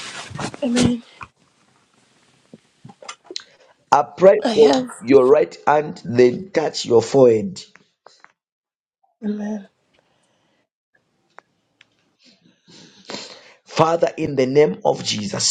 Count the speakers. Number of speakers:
2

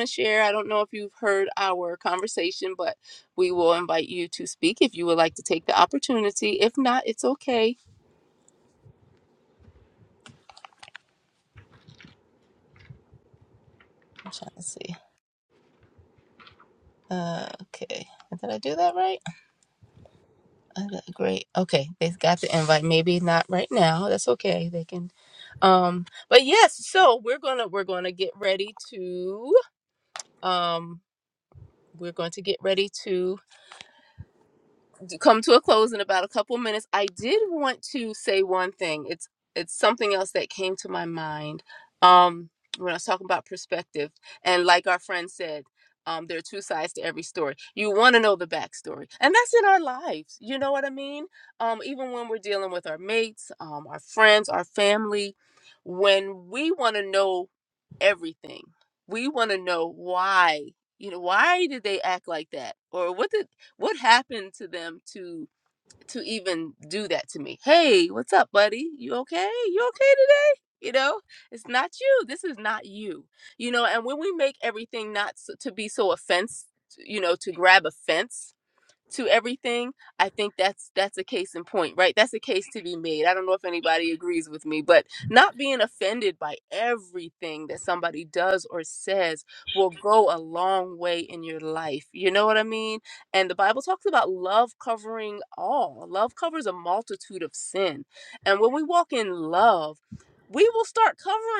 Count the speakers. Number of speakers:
1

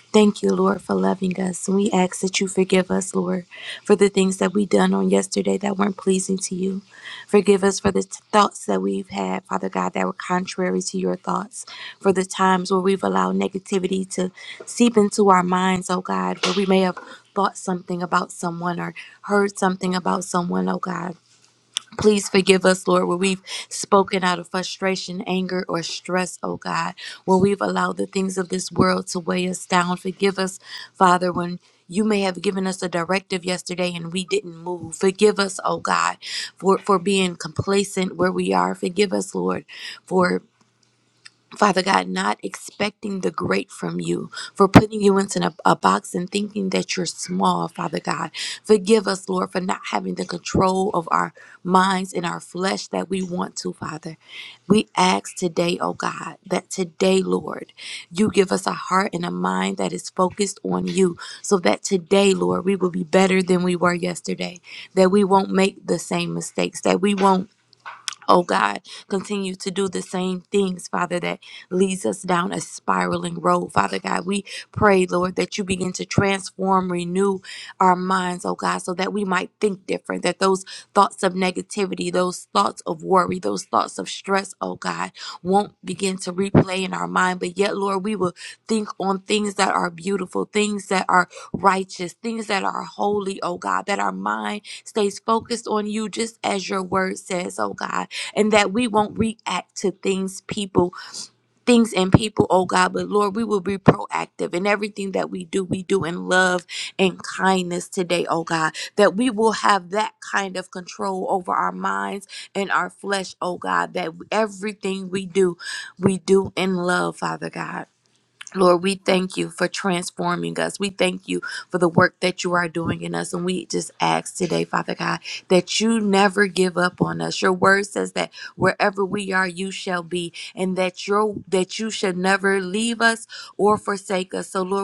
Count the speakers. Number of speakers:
1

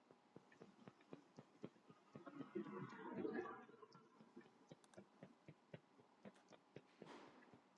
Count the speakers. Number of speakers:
0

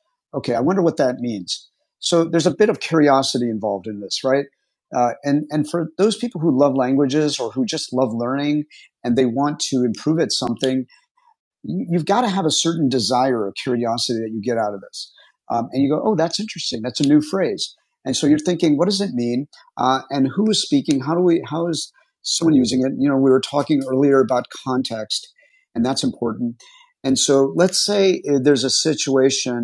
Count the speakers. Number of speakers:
1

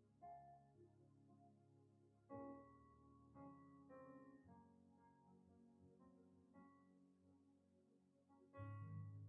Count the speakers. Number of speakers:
0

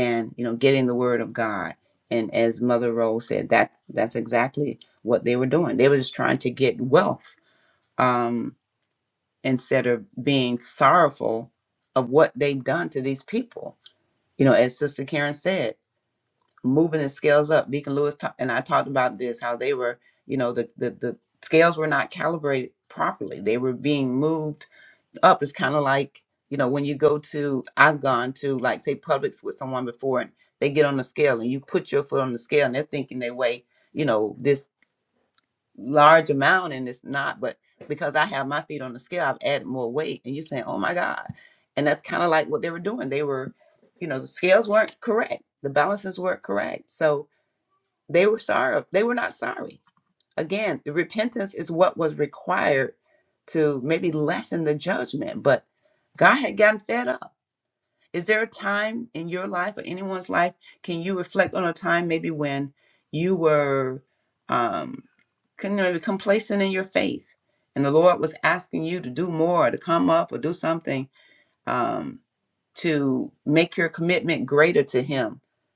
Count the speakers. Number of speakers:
1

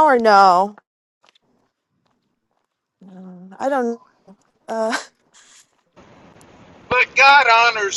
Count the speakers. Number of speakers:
2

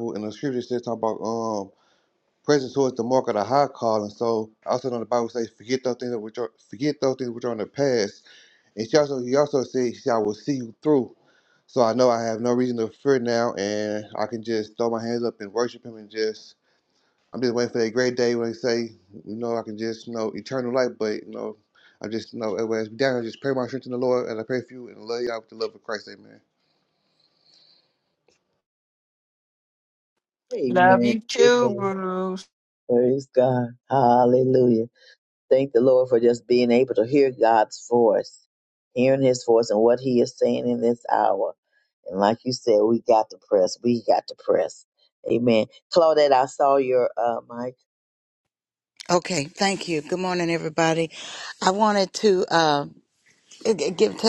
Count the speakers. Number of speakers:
4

